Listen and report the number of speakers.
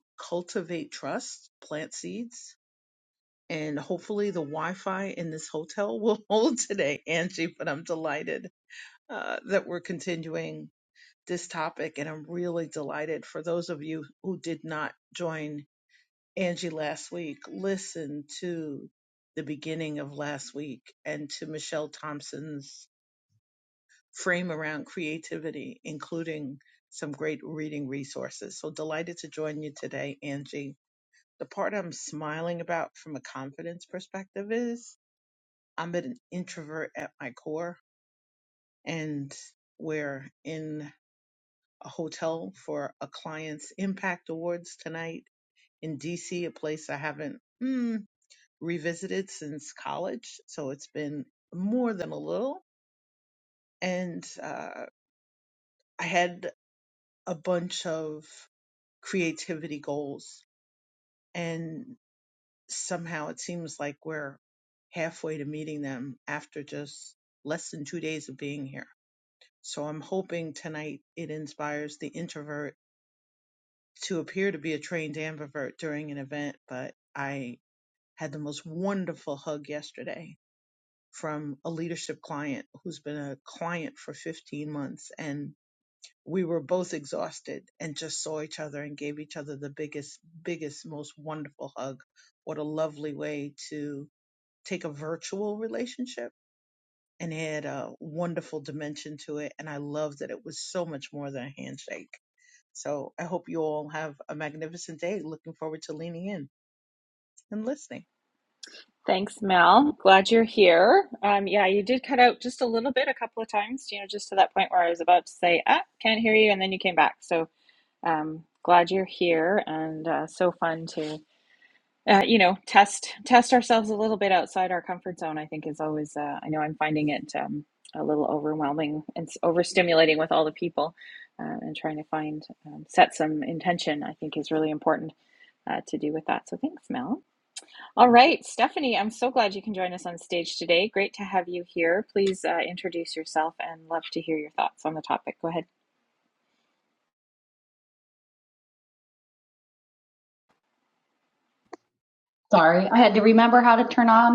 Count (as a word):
three